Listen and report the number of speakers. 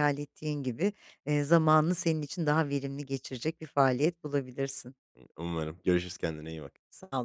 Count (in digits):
2